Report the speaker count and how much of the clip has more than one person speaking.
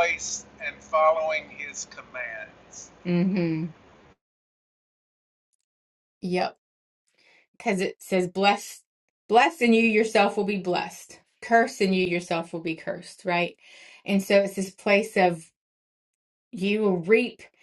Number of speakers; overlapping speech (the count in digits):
2, no overlap